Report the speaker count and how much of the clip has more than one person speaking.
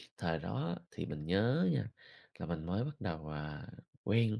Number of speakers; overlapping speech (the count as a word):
one, no overlap